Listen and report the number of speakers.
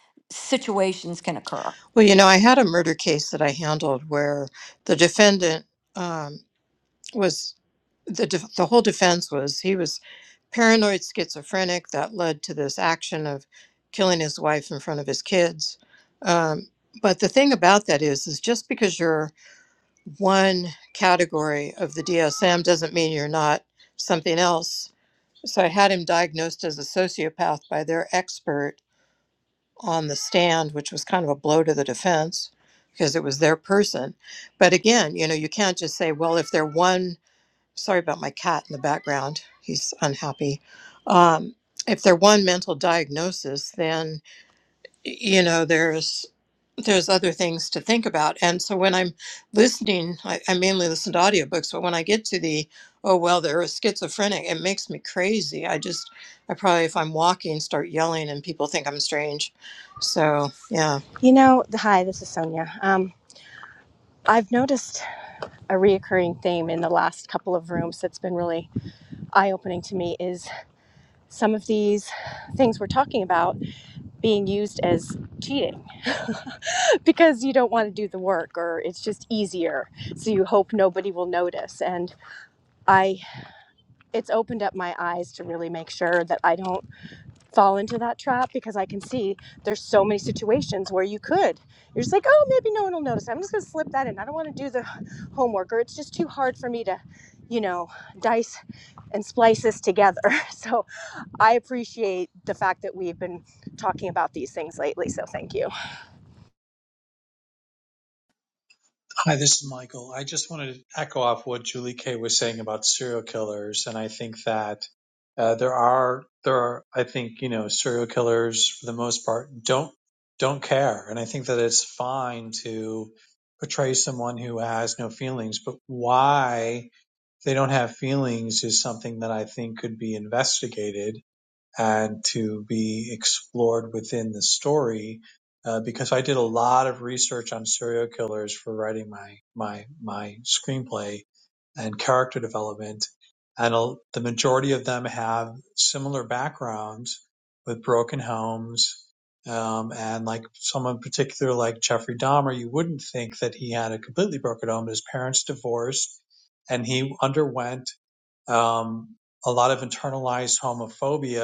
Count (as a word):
four